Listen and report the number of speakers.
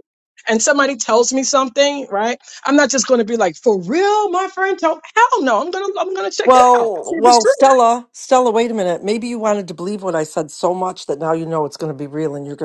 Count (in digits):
2